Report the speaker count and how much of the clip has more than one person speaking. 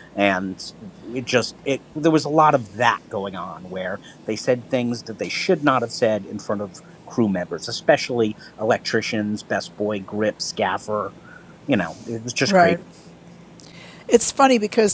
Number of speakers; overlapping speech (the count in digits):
2, about 3%